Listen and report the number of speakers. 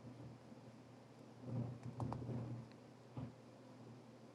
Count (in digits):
0